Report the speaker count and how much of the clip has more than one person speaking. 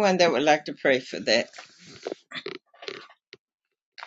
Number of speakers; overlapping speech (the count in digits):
1, no overlap